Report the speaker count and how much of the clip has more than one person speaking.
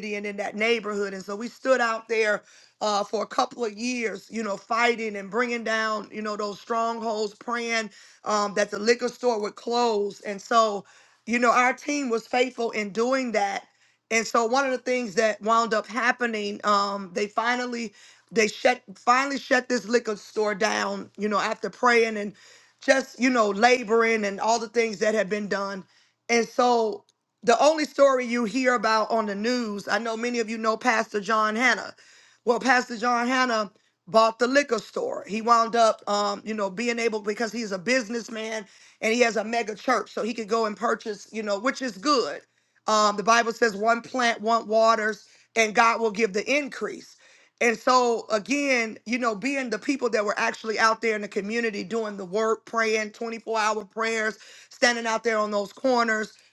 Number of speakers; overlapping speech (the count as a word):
one, no overlap